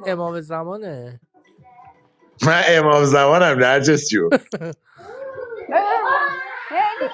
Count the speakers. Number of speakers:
3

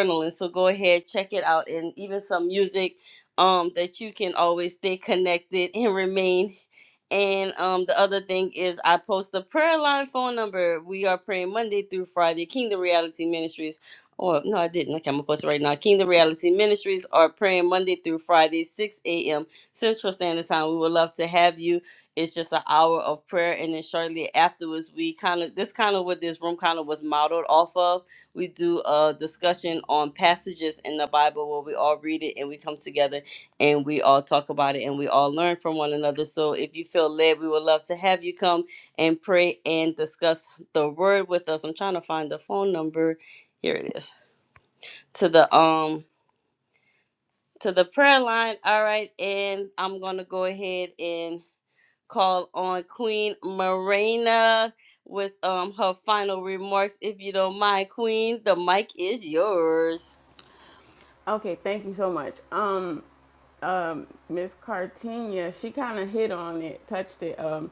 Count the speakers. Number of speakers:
2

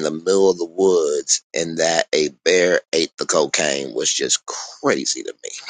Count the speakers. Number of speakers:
1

